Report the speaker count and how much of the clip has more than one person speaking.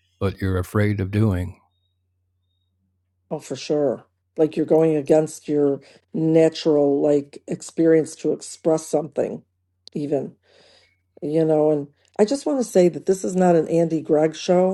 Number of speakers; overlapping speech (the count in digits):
2, no overlap